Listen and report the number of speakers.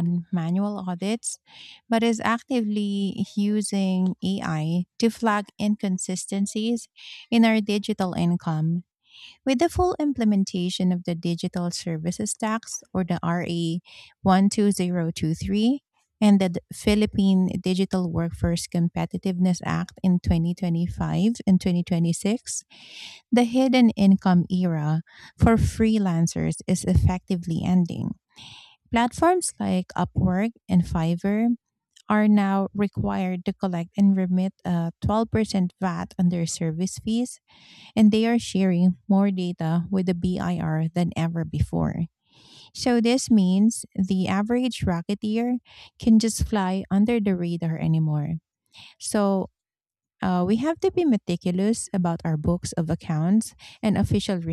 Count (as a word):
one